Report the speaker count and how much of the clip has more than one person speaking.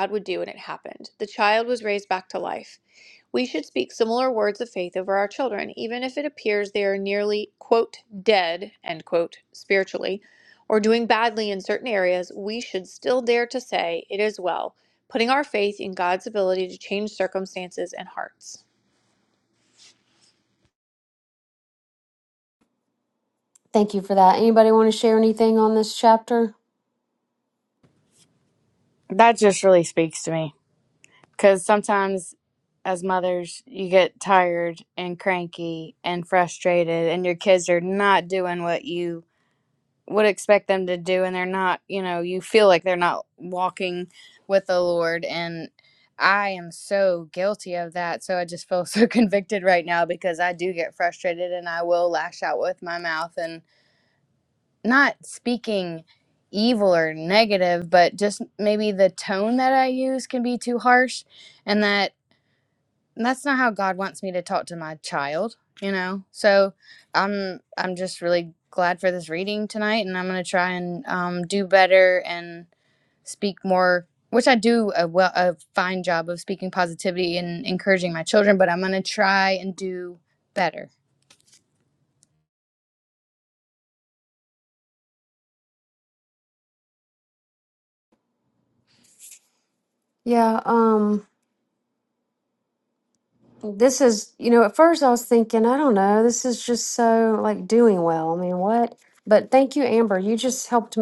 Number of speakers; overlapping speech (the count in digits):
3, no overlap